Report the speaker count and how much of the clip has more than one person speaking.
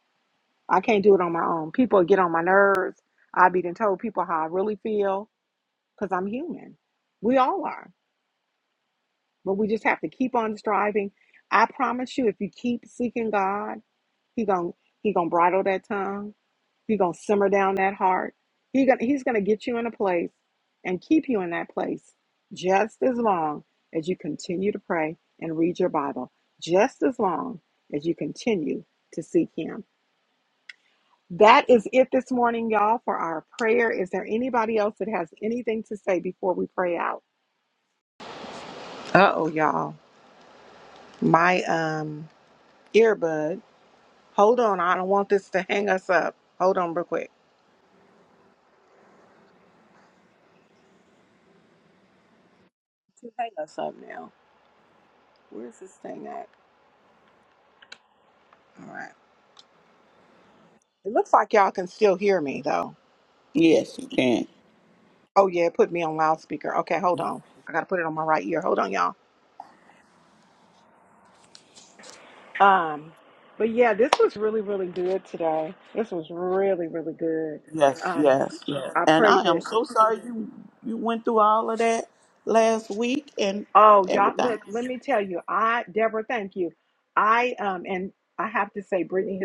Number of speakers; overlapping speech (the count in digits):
2, about 2%